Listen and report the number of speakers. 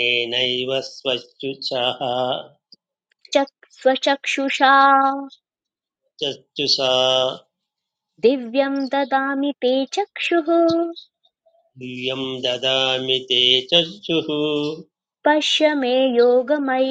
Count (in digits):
2